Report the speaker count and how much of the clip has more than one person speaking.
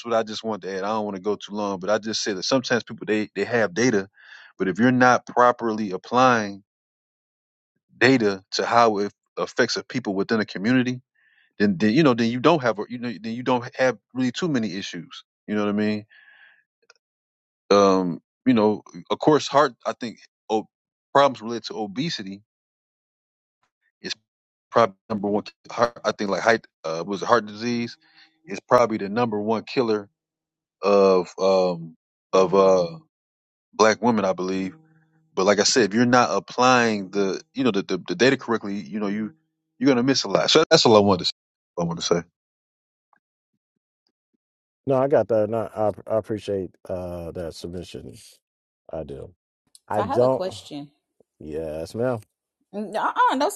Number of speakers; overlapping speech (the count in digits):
3, about 1%